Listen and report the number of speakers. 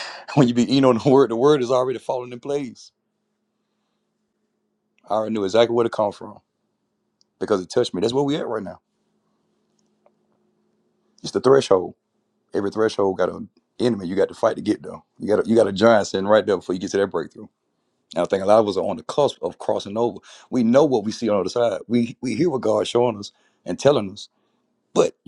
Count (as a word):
one